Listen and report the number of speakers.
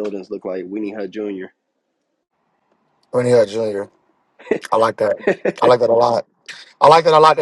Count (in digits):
2